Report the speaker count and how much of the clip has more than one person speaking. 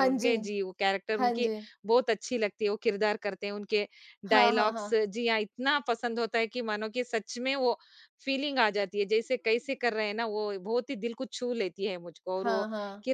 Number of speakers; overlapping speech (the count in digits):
2, about 12%